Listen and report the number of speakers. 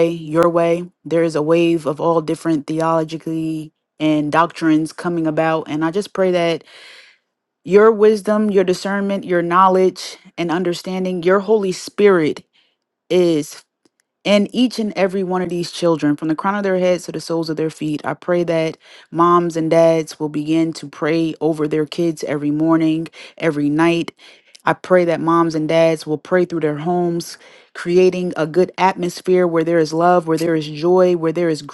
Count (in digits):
1